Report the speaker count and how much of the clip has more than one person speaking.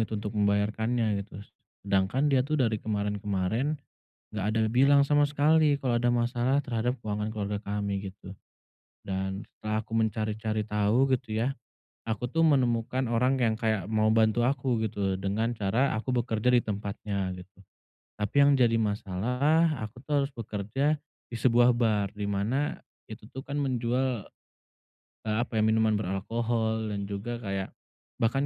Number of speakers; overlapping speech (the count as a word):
one, no overlap